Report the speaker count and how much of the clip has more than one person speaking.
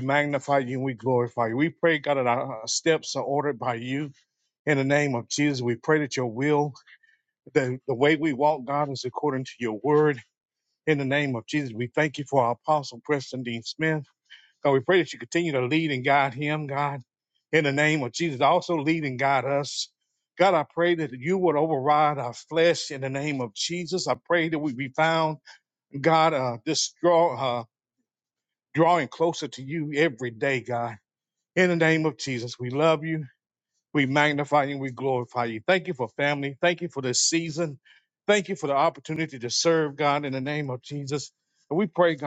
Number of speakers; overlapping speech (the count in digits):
1, no overlap